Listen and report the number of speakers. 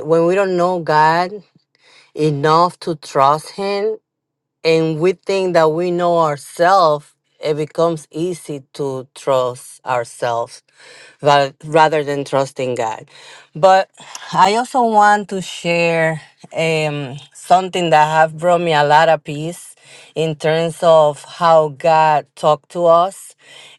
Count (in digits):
1